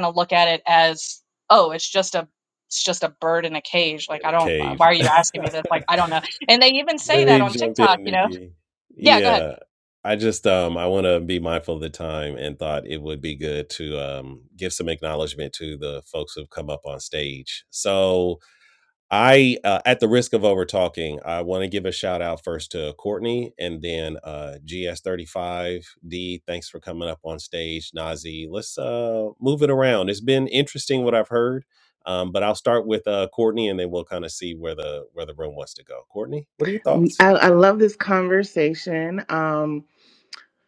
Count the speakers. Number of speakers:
3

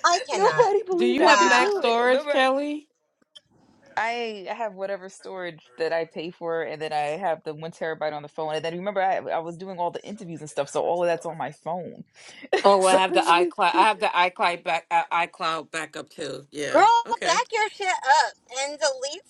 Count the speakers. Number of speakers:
3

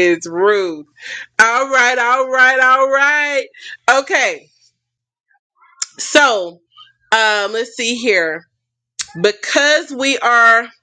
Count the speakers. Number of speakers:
1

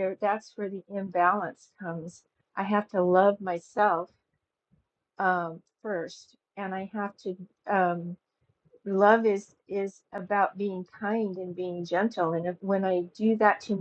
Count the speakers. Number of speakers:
1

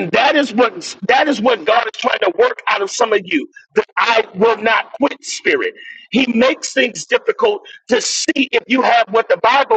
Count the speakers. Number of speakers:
1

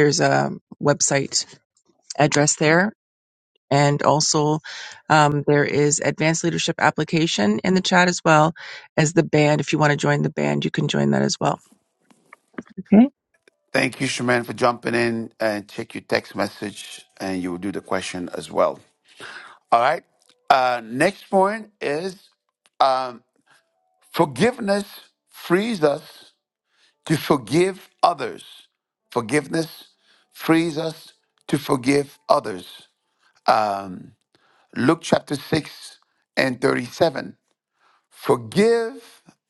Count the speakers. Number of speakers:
2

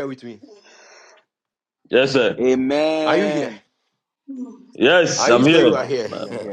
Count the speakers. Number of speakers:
3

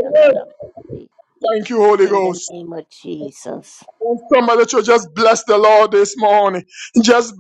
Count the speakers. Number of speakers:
2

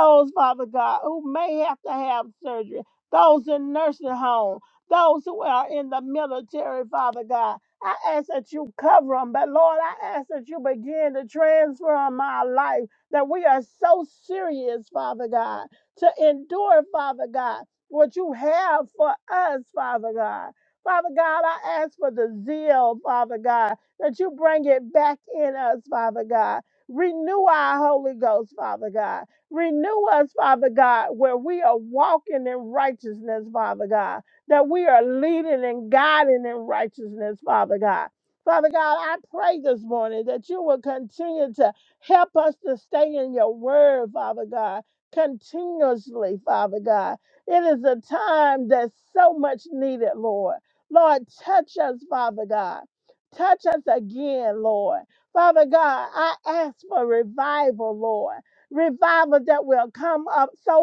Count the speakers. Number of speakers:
1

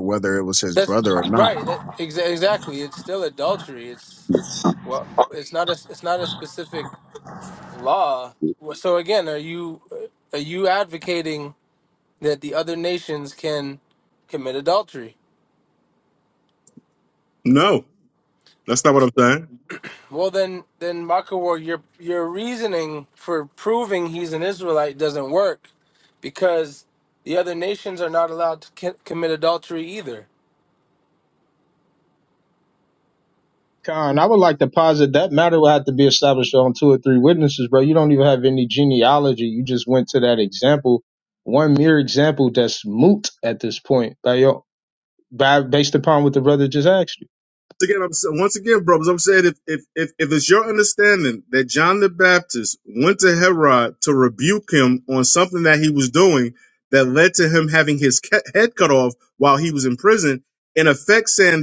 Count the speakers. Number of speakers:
4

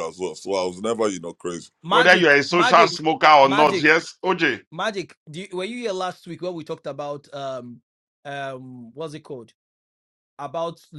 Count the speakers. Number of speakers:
3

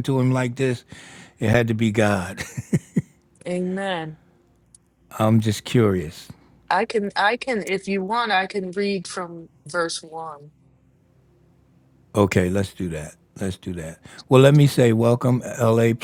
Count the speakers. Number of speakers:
2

